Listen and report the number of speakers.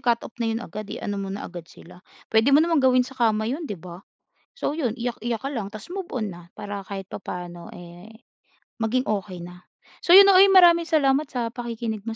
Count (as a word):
one